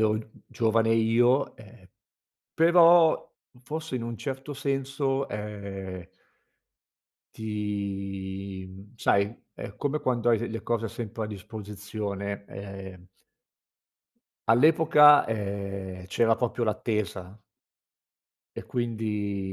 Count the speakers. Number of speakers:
1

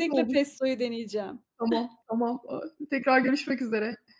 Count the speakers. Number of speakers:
2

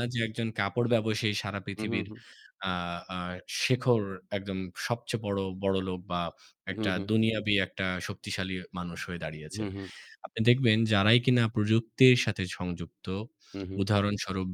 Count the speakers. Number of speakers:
2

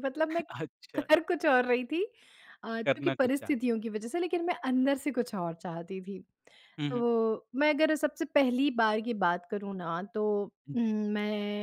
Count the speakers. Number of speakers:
2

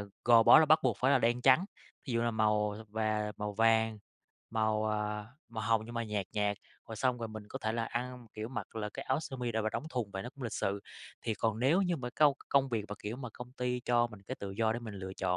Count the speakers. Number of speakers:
1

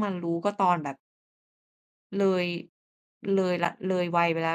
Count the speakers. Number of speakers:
1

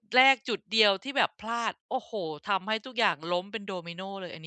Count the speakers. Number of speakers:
1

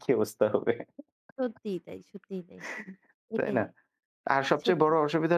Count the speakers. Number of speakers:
2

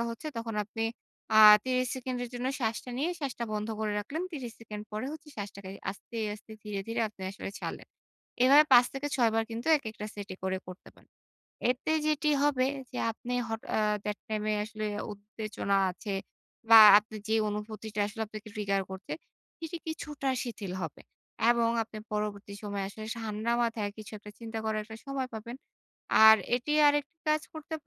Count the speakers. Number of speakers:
1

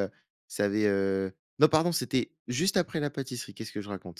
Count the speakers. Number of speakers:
1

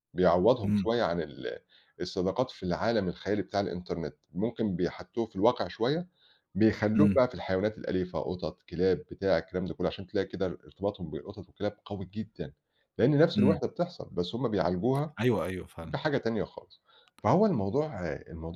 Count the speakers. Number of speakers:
2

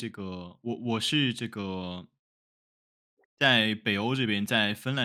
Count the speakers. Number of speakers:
1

